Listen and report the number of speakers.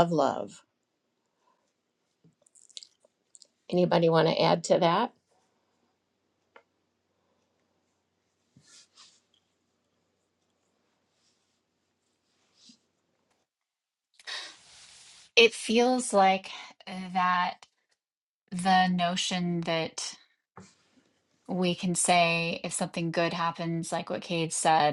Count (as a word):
two